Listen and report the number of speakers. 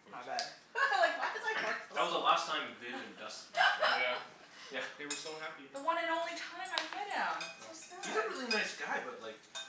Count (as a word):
four